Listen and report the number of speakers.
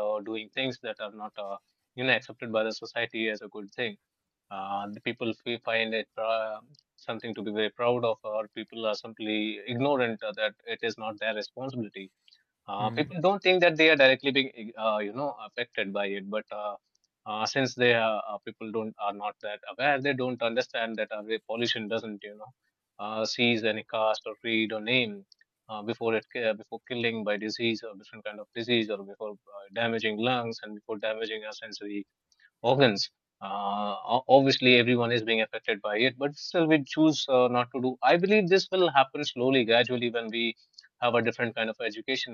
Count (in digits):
1